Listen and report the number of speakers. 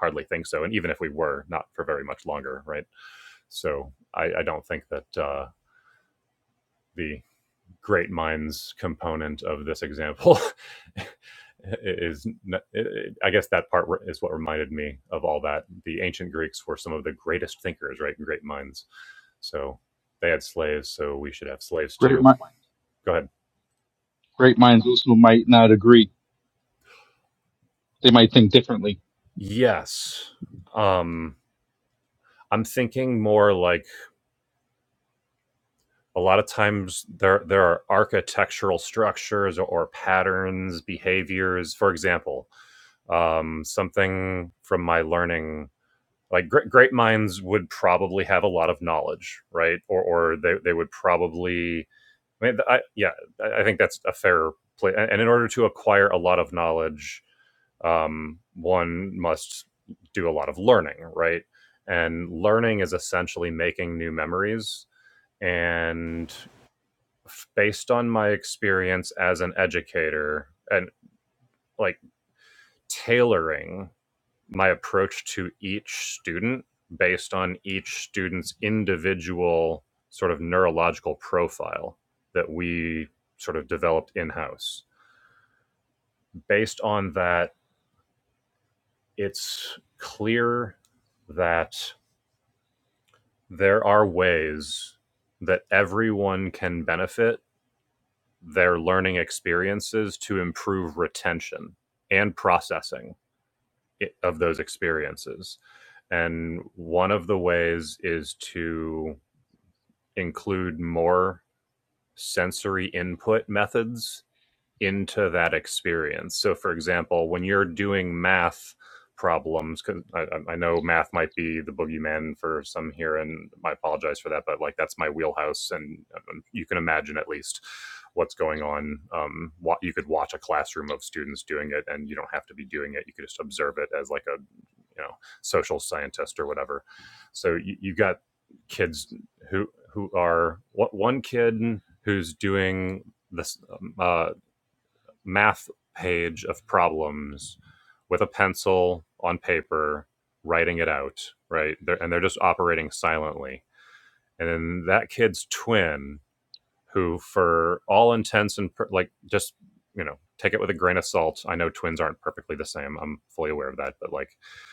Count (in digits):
2